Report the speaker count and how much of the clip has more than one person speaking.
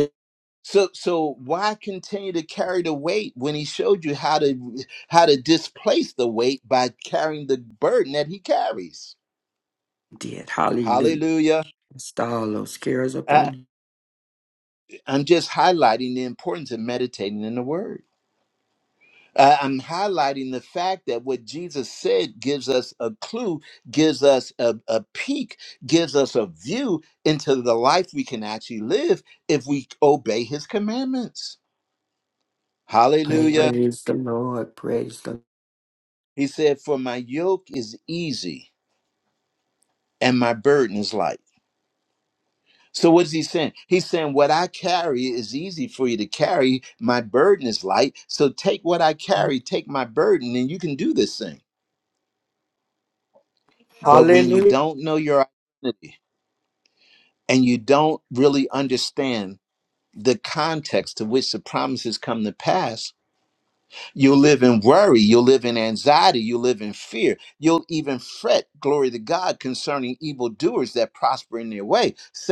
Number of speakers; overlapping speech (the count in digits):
2, about 2%